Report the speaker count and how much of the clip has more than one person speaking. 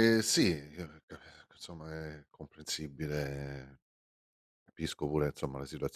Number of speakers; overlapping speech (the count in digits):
1, no overlap